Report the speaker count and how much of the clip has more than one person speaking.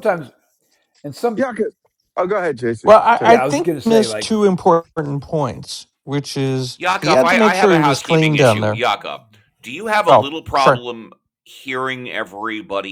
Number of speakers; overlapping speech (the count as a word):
four, about 28%